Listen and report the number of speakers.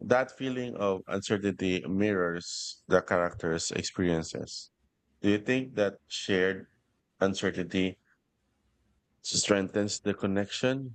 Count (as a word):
one